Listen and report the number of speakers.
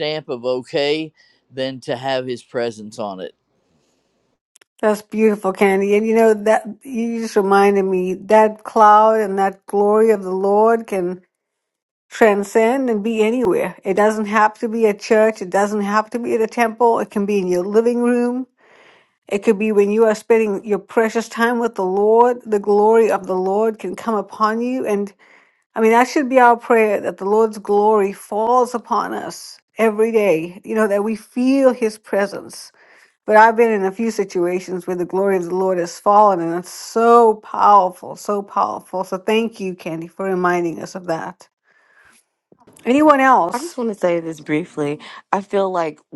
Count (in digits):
3